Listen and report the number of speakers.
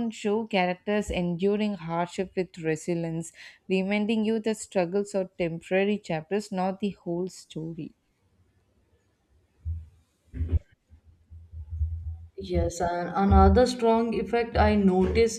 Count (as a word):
two